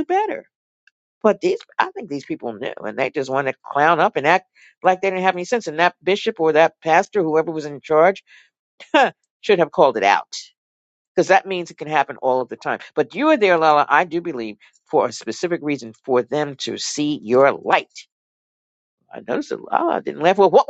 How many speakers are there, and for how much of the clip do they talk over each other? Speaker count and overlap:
one, no overlap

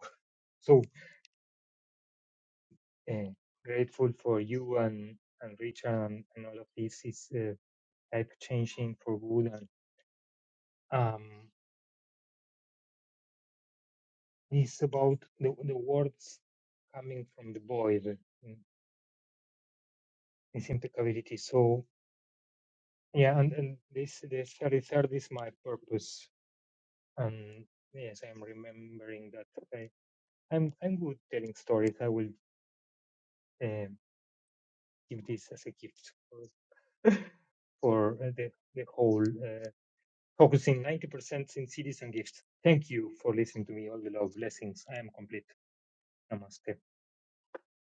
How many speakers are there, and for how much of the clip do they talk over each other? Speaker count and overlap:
one, no overlap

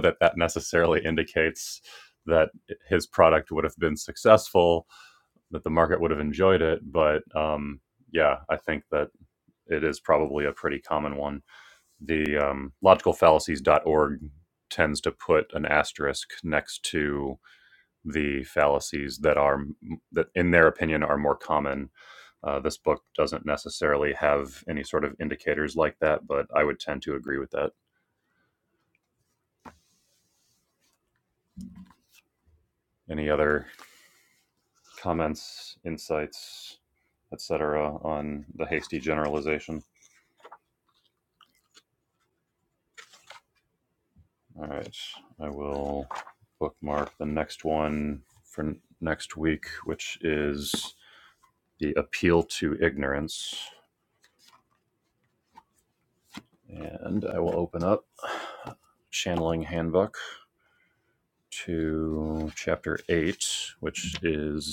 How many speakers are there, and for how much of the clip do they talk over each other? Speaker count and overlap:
one, no overlap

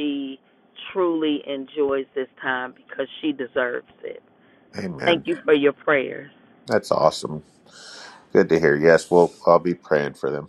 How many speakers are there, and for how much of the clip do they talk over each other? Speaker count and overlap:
two, about 2%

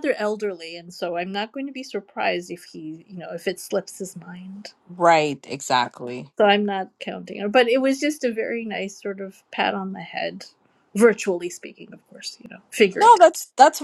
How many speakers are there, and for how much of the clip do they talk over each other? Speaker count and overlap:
two, about 1%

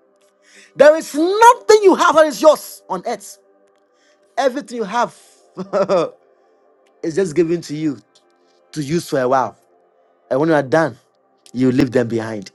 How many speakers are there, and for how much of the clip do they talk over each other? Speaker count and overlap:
one, no overlap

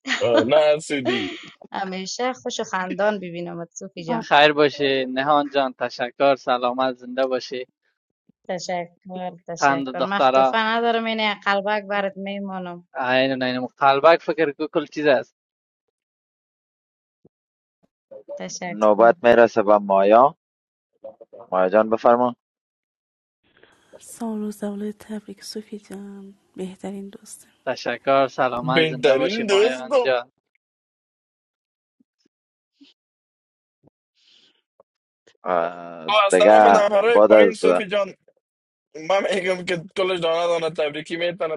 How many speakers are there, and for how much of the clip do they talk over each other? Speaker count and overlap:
five, about 13%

